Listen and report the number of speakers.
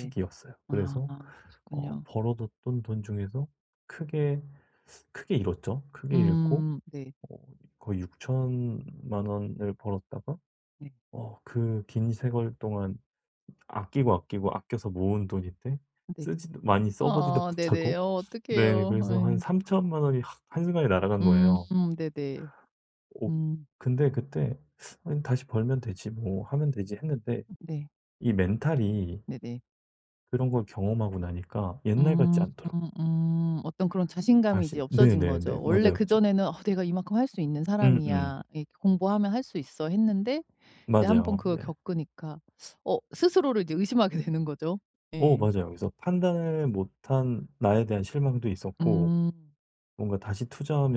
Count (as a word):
two